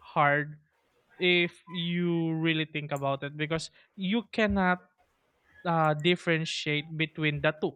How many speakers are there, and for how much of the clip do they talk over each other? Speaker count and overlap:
1, no overlap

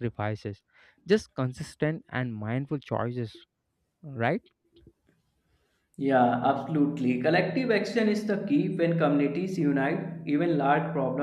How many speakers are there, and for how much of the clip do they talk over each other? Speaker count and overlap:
2, no overlap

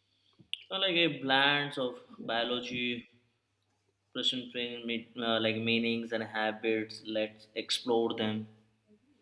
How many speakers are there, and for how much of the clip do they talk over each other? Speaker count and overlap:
1, no overlap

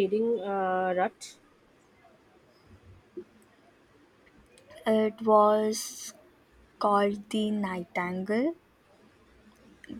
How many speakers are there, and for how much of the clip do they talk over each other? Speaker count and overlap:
2, no overlap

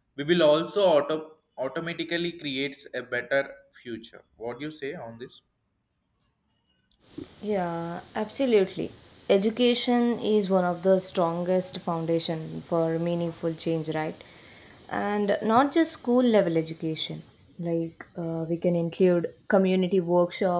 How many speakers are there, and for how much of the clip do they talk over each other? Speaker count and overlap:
2, no overlap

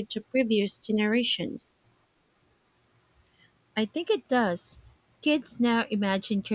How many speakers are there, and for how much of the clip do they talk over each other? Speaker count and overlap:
2, no overlap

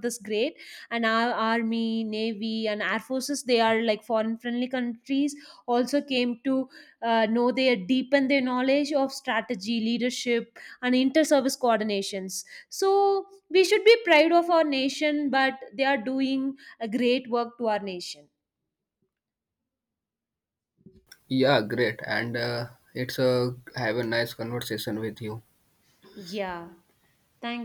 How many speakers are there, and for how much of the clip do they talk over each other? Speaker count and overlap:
2, no overlap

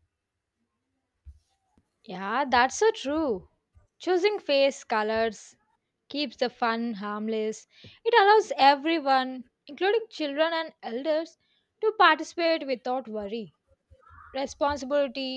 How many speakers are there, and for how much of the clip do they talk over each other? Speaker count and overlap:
1, no overlap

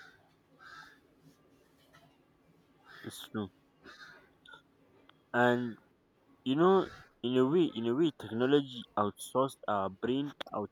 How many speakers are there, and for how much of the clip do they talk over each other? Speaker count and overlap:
1, no overlap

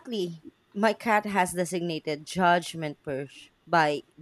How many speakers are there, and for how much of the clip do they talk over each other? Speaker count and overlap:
1, no overlap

